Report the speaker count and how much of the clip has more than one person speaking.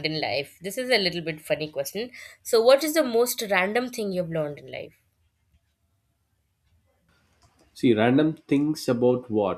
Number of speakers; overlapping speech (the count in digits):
2, no overlap